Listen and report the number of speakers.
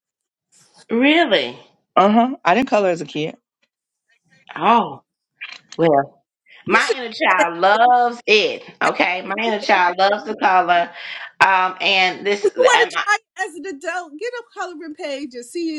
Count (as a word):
three